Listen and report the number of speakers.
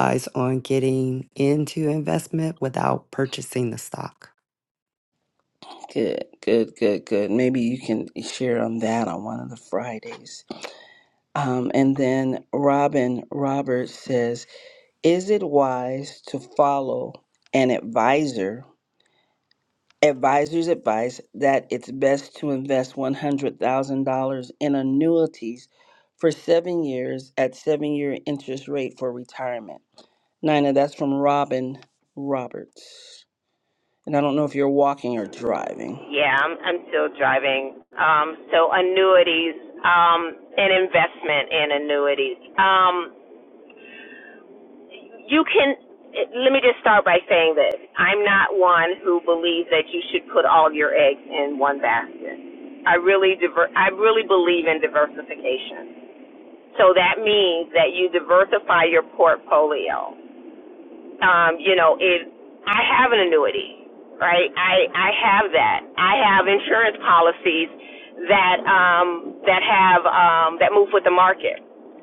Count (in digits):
3